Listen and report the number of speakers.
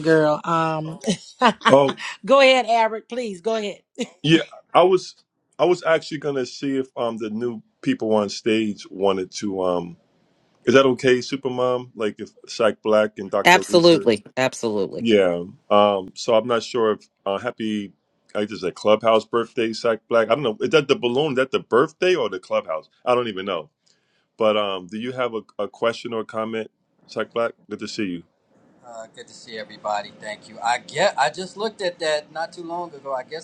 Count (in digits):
4